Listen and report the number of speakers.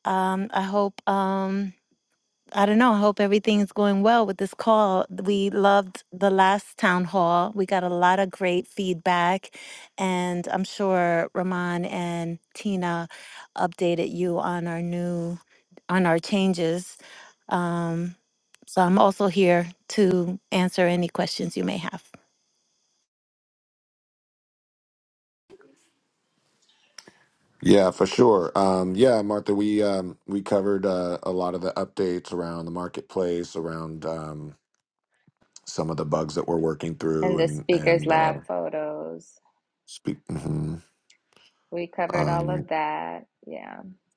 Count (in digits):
3